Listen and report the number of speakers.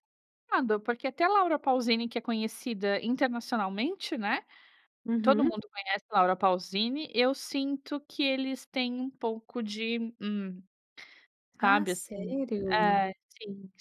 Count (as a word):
two